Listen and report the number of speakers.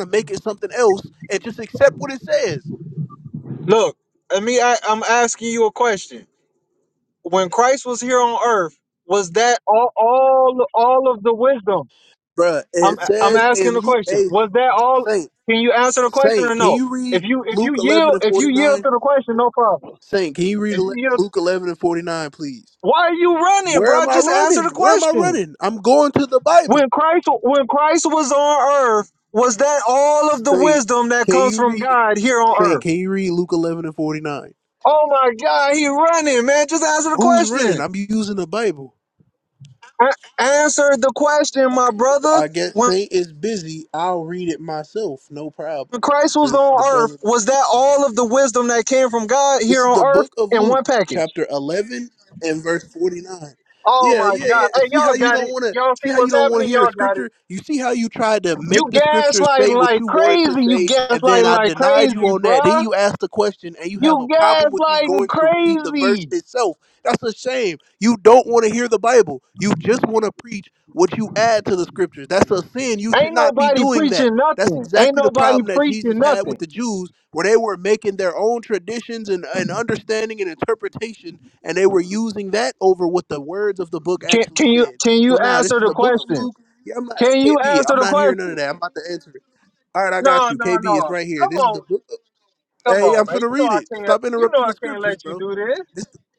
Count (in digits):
2